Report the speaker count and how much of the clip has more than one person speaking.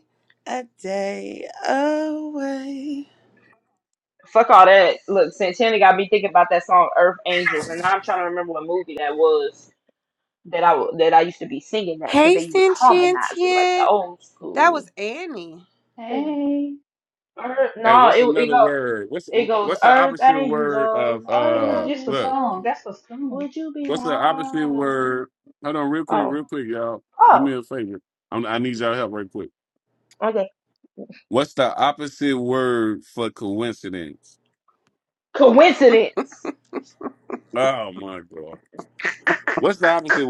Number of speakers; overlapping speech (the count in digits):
4, about 19%